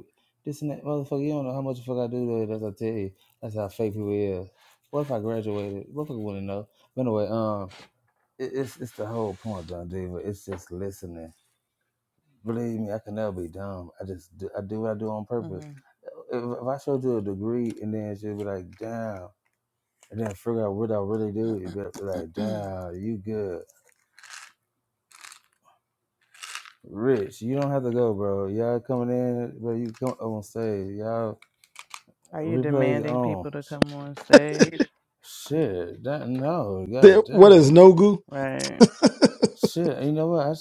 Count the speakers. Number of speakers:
three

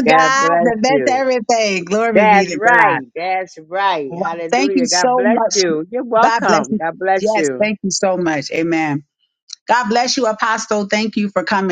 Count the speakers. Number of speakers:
two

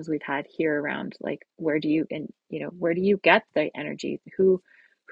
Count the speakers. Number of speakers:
one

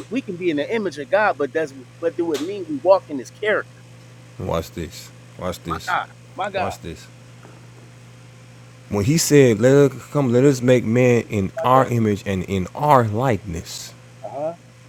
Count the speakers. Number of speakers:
two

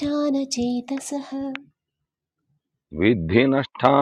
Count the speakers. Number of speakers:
two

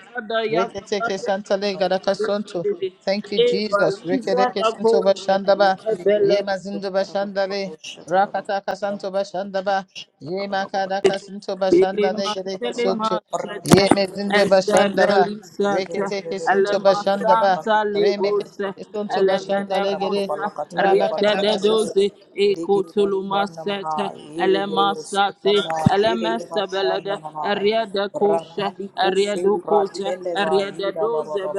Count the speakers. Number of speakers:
three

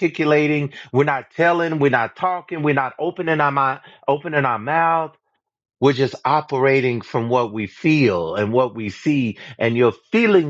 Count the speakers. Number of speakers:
one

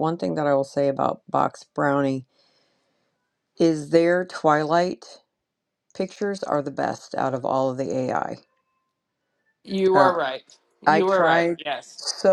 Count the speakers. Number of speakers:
two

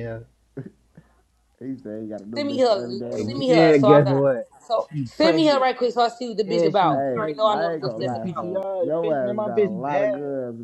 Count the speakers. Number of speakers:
three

